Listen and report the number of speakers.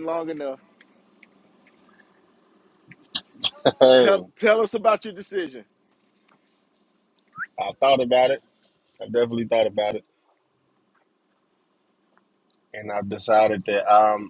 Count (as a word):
two